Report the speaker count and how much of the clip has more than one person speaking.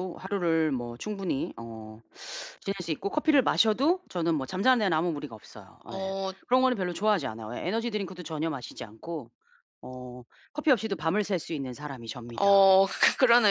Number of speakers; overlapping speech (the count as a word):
two, about 5%